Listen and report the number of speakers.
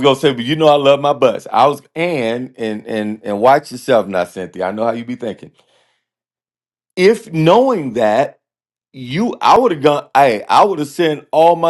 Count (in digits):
1